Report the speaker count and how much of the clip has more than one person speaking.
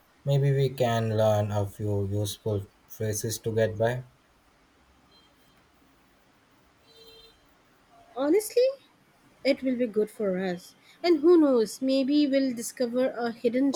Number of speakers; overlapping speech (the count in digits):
2, no overlap